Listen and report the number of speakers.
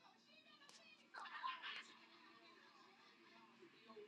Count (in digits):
0